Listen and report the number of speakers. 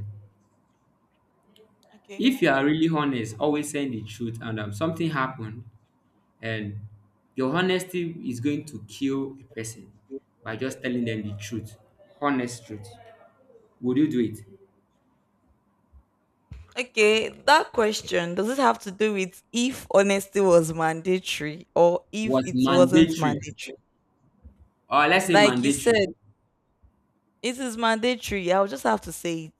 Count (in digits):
2